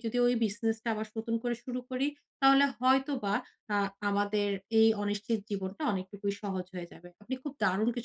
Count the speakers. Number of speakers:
1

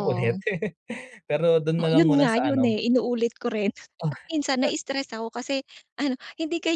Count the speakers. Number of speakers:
2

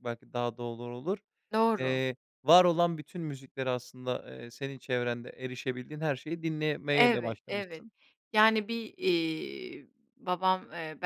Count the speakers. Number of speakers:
2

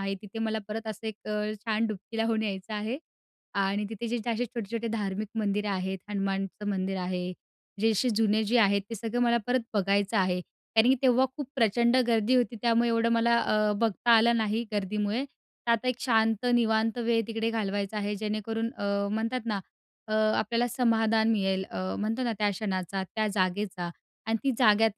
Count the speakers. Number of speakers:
1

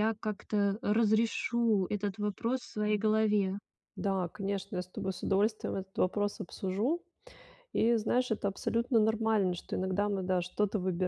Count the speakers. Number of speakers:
2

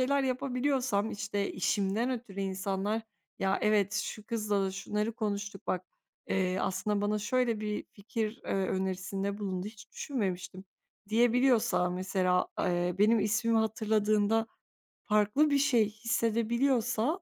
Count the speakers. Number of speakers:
1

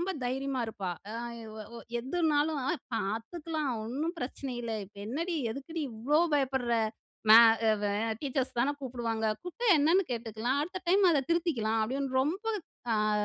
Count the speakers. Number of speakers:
1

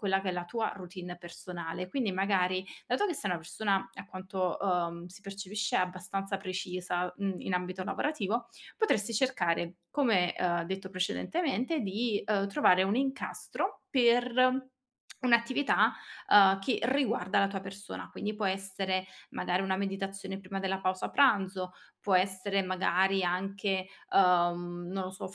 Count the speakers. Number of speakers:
1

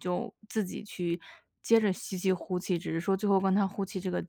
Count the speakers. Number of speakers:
1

